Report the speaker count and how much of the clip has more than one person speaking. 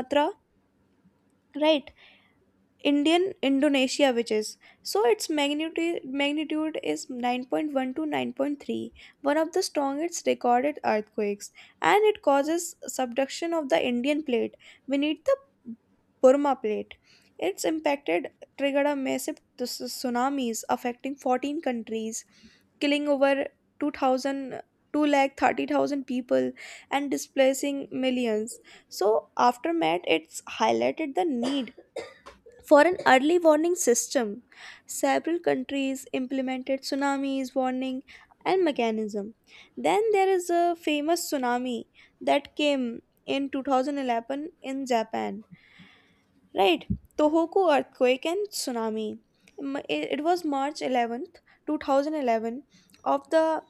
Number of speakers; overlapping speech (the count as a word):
one, no overlap